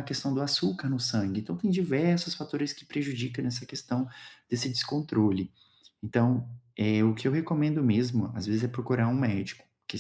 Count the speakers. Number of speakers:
1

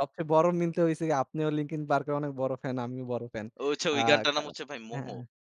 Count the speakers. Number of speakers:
2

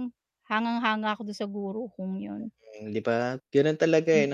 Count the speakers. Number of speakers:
2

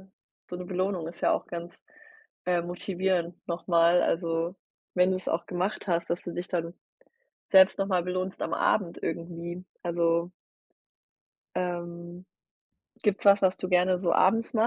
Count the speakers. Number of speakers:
1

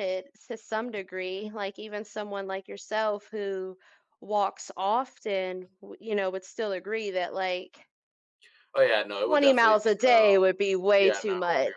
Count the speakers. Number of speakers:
2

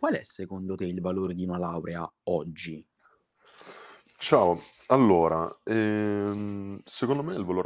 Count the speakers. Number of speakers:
2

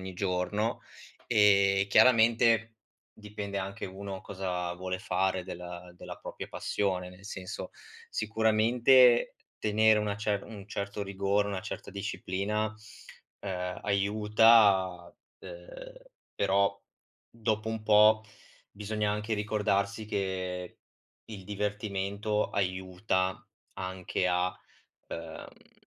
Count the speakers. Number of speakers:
1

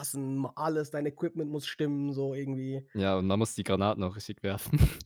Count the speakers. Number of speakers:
2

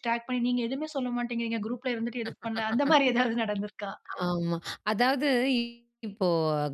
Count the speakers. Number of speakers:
2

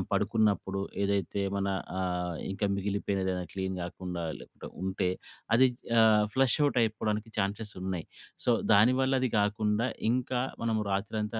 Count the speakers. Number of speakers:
1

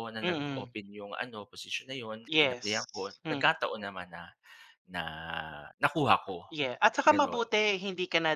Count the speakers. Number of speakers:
2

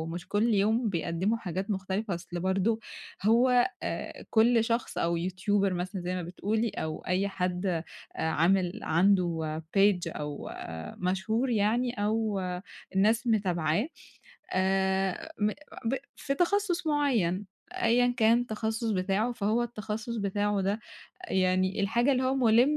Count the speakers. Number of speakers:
1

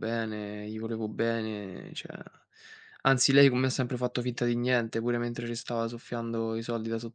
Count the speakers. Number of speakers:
1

